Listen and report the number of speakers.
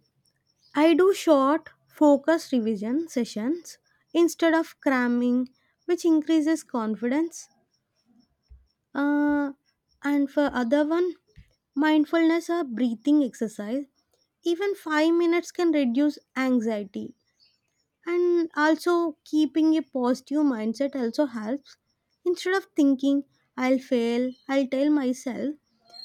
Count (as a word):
one